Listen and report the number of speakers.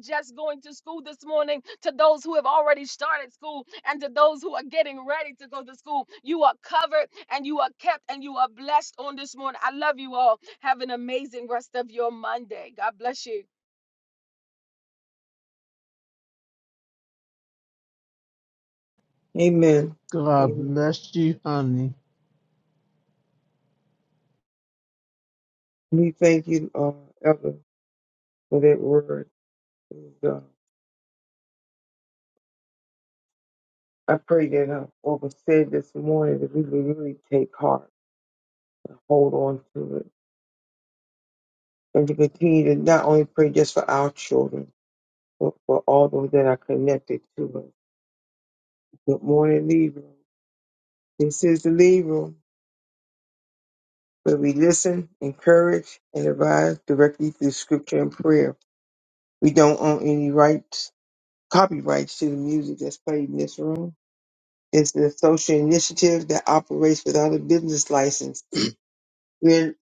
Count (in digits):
3